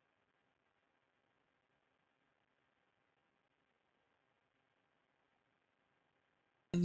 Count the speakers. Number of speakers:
0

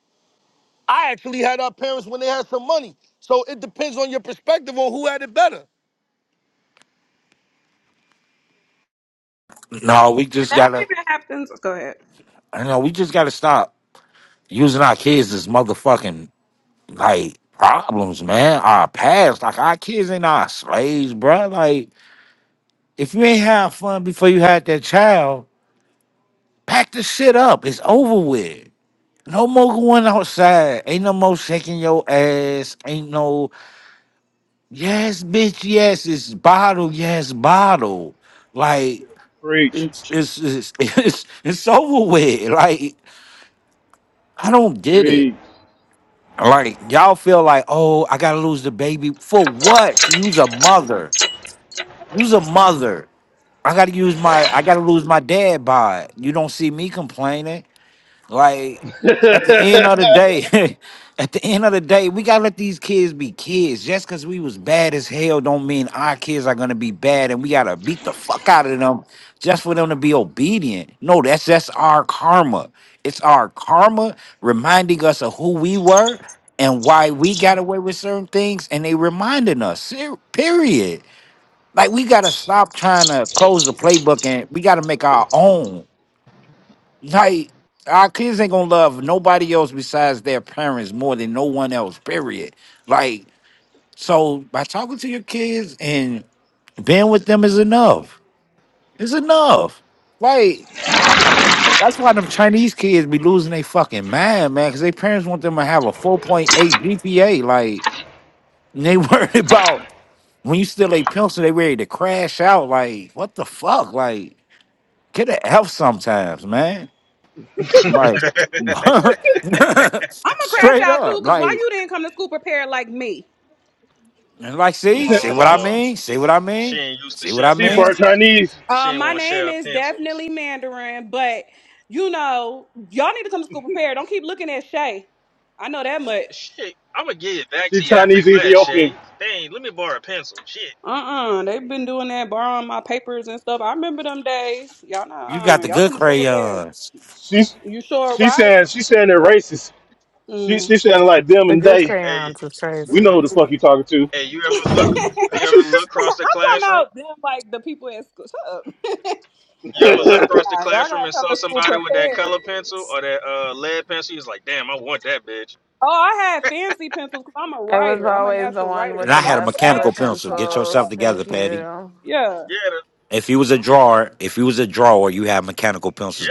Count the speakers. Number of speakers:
6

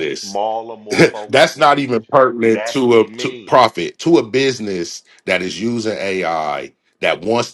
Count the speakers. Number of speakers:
2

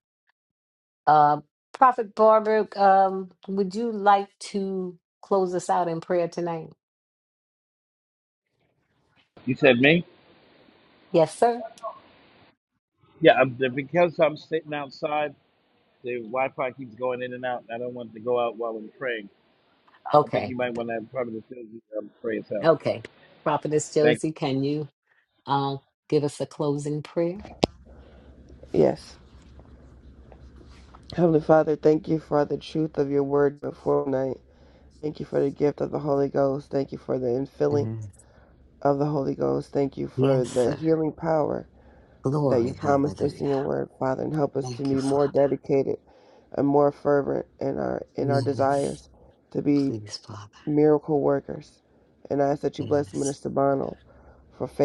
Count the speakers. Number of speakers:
3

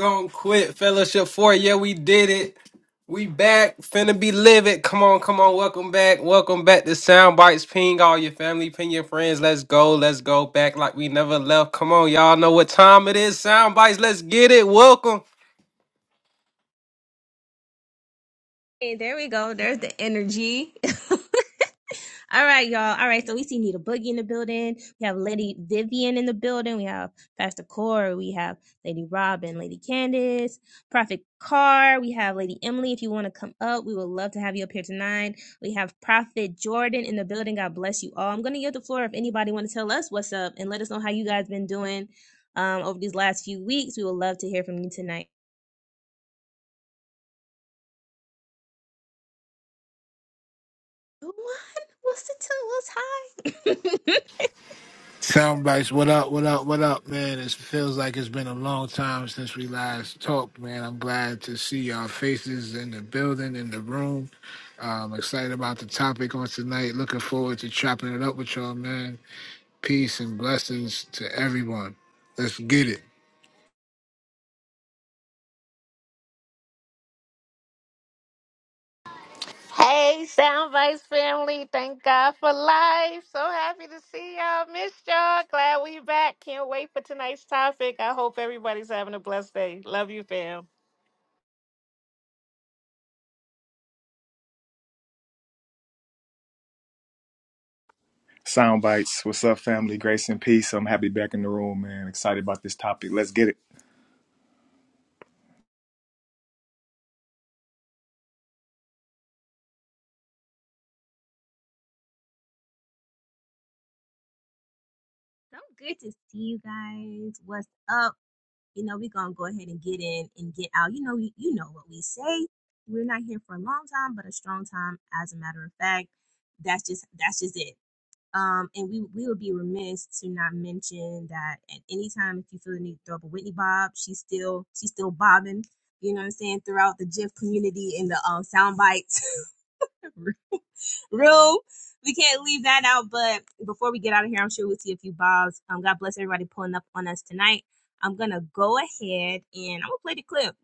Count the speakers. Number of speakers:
5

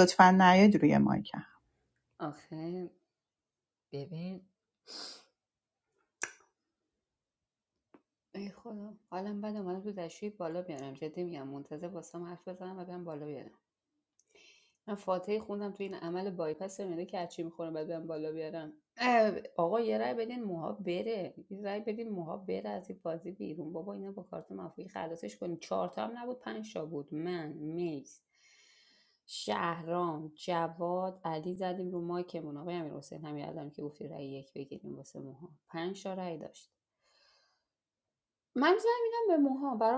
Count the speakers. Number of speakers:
2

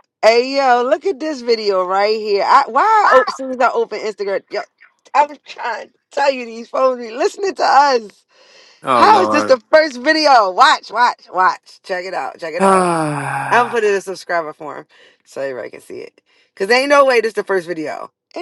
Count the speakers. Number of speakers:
2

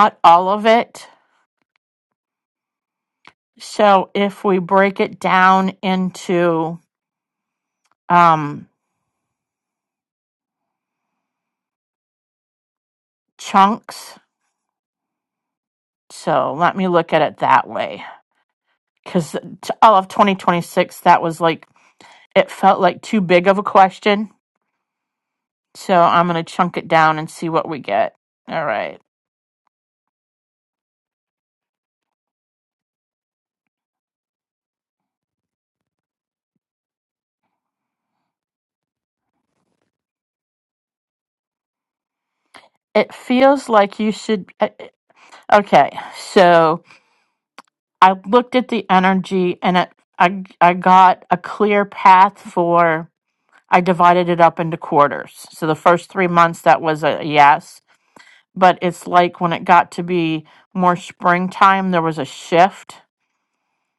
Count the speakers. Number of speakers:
1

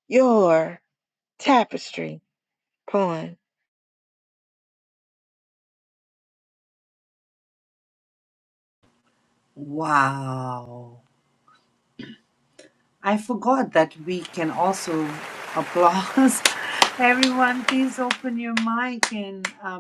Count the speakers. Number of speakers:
2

